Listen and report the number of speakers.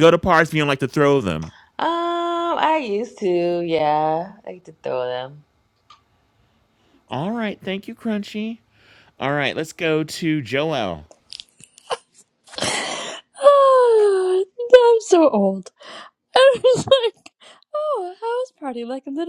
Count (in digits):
3